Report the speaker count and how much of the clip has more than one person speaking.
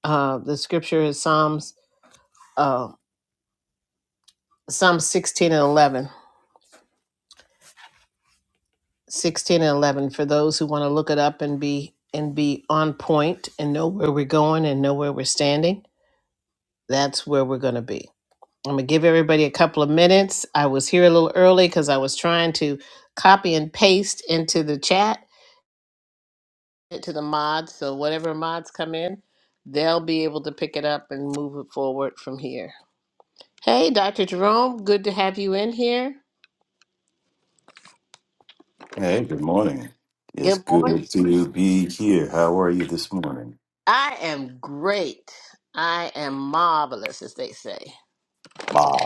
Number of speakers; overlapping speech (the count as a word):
two, about 1%